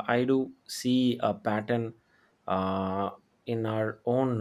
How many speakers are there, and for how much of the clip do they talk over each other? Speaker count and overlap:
1, no overlap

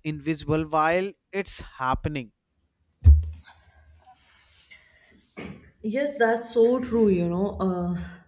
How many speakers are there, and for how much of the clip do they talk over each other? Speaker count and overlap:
2, no overlap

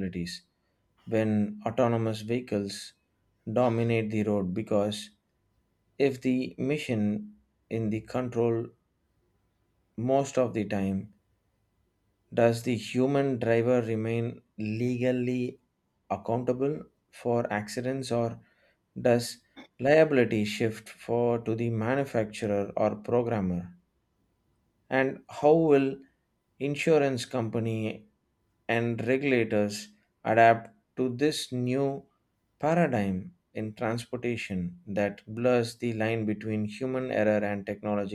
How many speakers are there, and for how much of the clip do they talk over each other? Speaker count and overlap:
1, no overlap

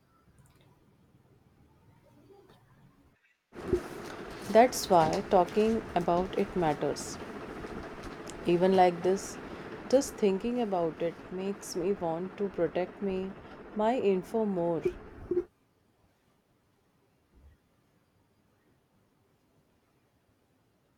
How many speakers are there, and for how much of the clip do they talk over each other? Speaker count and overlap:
1, no overlap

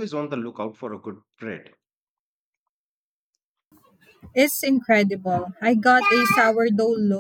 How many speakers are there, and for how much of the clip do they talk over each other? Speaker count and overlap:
2, no overlap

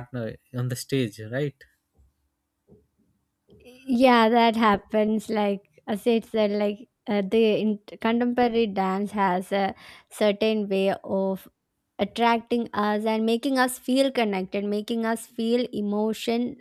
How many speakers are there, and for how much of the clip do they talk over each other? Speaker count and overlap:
2, no overlap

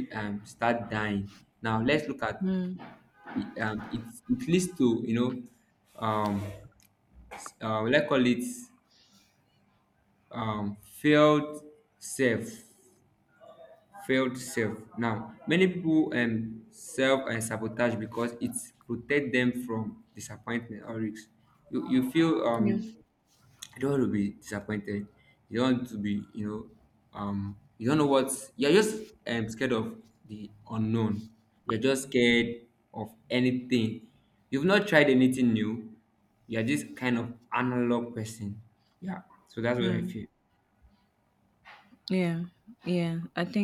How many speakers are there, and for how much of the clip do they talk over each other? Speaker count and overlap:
2, about 1%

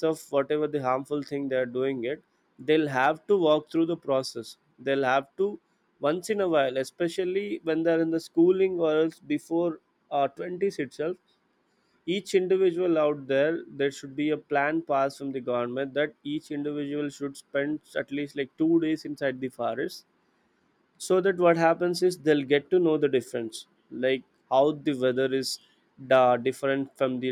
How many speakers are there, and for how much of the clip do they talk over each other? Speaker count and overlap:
1, no overlap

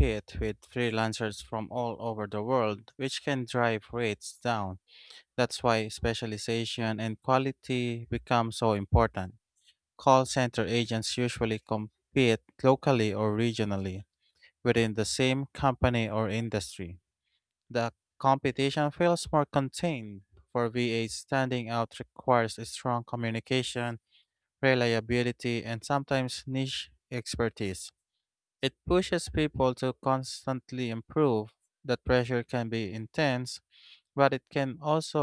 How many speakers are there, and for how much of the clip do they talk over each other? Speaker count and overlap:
1, no overlap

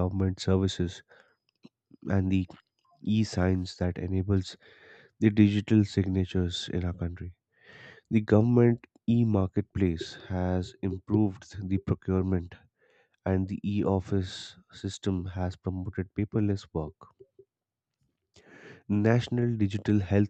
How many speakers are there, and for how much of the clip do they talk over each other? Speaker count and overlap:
1, no overlap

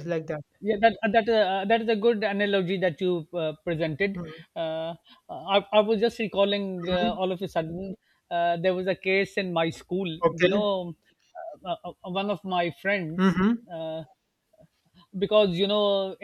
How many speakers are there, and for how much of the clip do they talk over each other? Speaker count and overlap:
2, about 5%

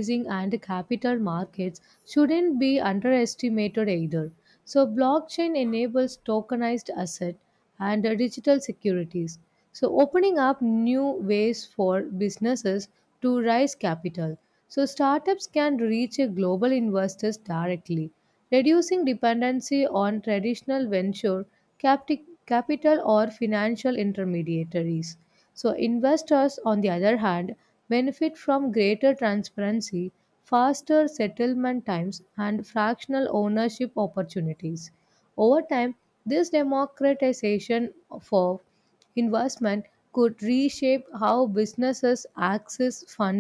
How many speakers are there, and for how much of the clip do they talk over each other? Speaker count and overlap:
1, no overlap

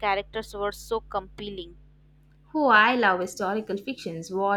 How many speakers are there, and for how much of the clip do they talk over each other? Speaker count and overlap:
2, no overlap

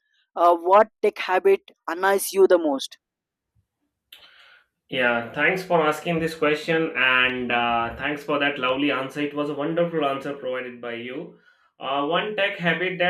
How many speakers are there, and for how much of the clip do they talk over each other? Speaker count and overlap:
2, no overlap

